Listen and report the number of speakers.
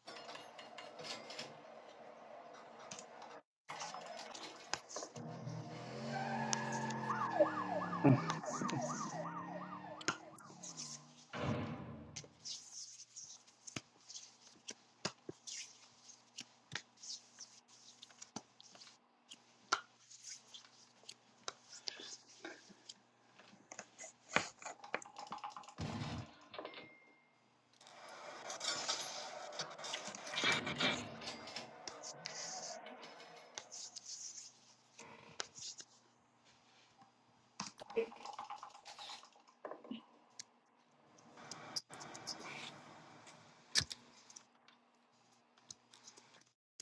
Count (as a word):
zero